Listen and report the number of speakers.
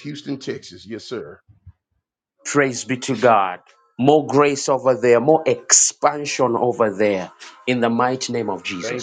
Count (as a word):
two